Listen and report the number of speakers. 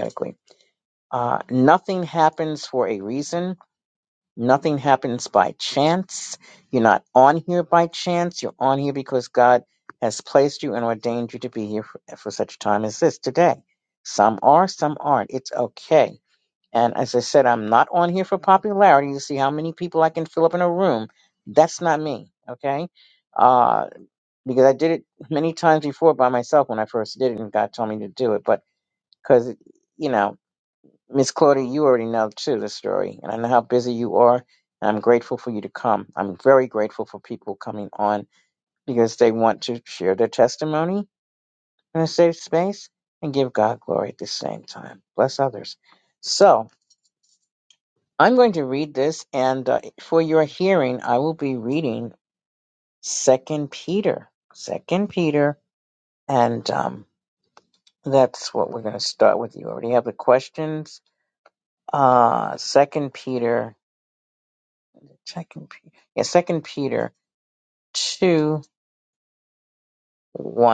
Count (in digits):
1